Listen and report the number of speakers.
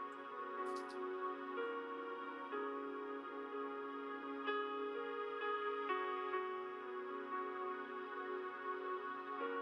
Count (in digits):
0